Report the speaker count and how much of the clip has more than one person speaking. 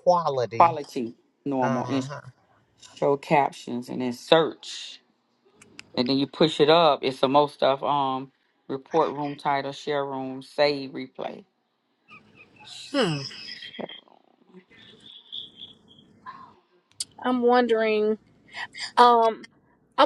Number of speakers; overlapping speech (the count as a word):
three, about 3%